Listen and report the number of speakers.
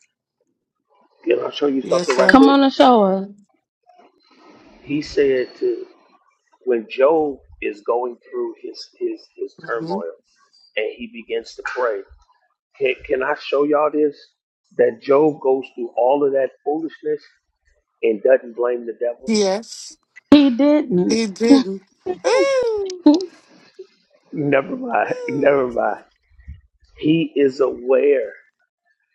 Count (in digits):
3